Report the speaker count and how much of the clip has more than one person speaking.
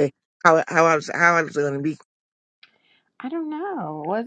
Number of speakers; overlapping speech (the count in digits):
2, no overlap